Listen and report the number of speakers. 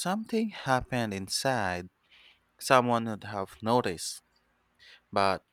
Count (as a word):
one